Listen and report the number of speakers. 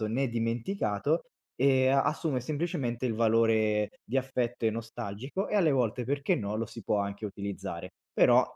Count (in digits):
1